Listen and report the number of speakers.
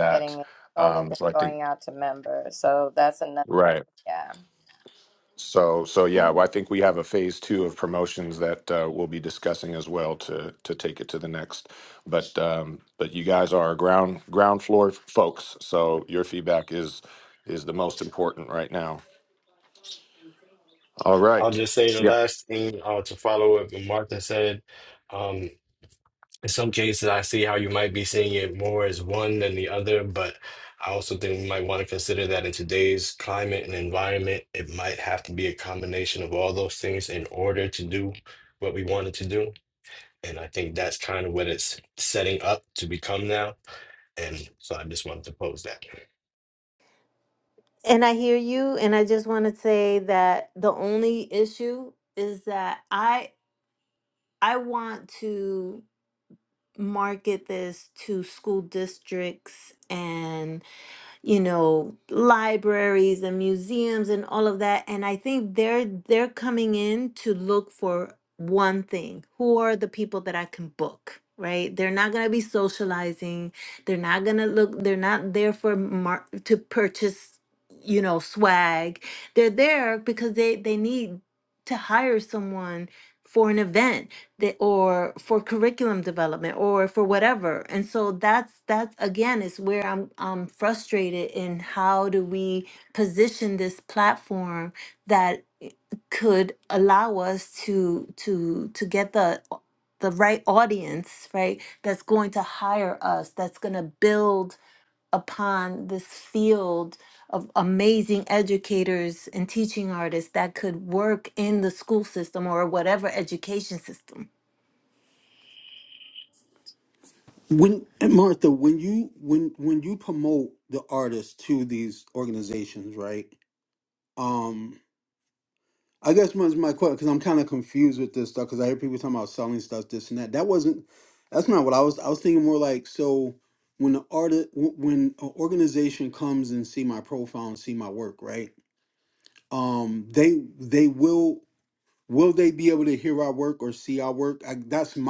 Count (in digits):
5